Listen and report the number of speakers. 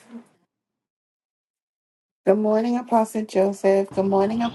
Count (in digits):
1